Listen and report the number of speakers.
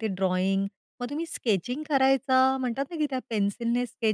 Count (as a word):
one